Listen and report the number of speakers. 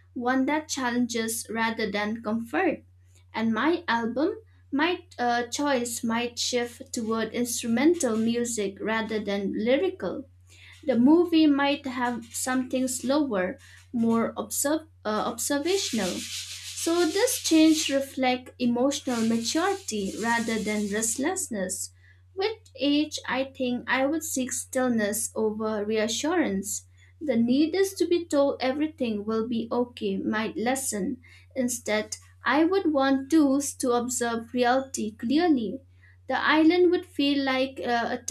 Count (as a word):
one